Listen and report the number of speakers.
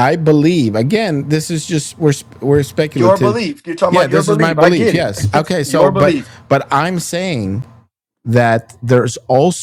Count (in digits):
2